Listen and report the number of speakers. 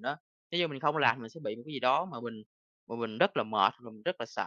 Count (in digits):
1